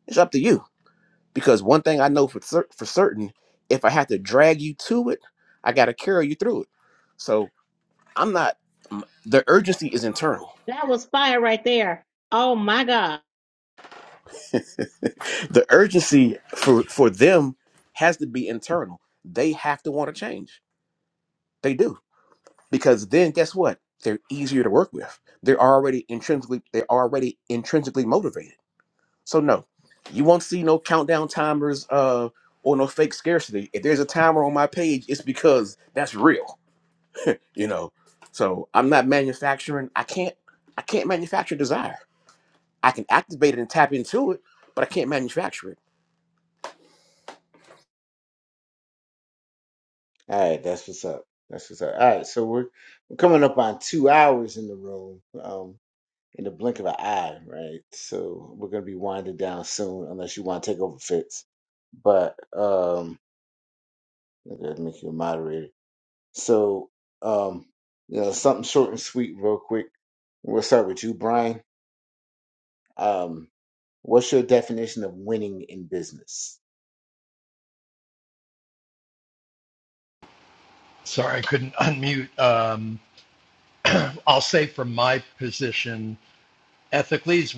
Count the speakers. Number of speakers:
four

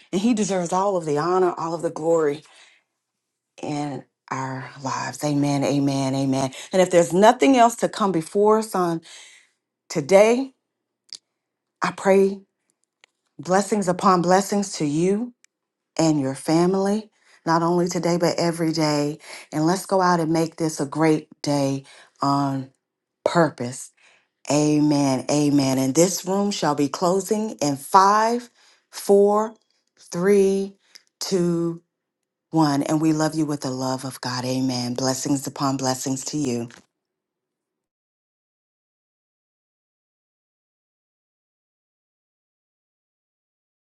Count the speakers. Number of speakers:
one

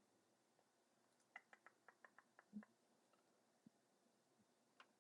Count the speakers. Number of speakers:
zero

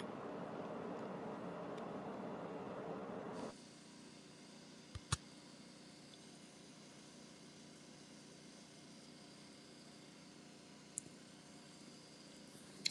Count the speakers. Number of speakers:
zero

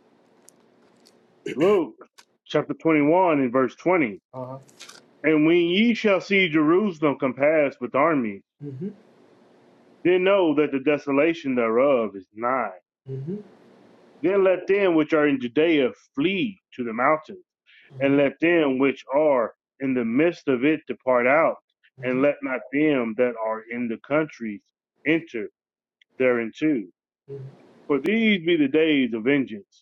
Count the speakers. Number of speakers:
two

